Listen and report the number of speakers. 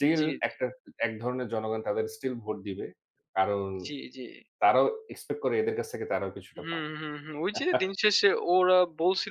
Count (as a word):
two